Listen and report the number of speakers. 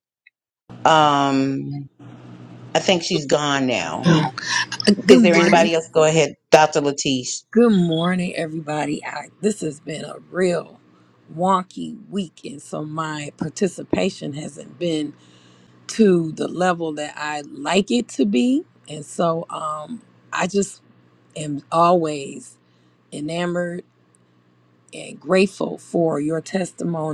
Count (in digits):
2